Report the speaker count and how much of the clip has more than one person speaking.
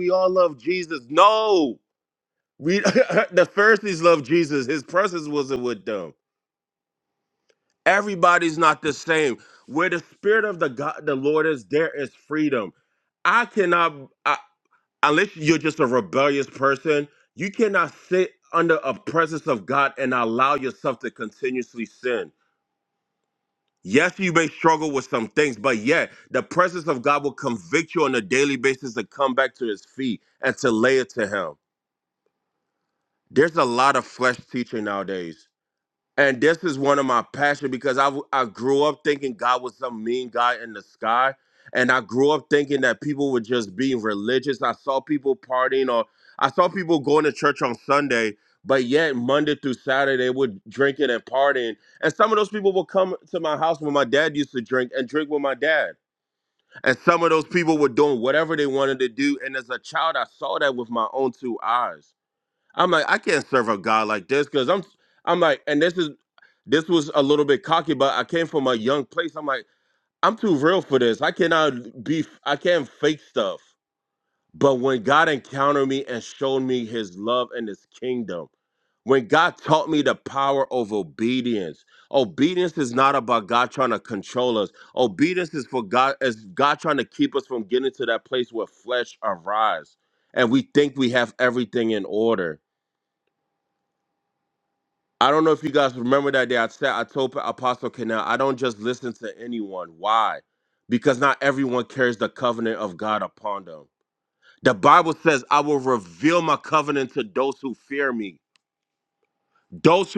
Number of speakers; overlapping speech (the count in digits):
1, no overlap